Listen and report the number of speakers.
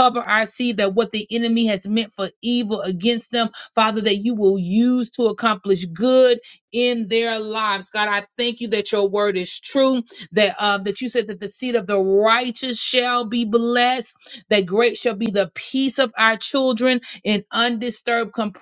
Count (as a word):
one